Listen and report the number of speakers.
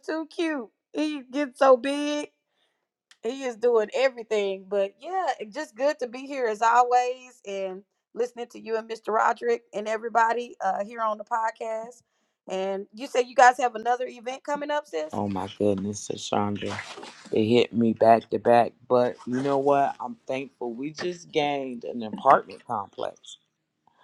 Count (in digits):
2